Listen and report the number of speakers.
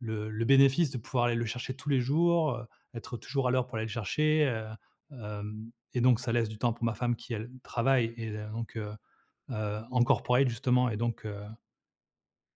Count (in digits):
1